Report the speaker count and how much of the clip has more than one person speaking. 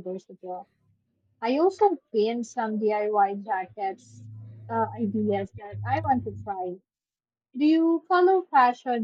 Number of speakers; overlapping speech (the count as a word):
one, no overlap